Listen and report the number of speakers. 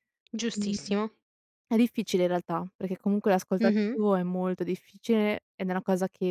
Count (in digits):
2